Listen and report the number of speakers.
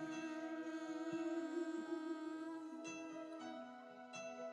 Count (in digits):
0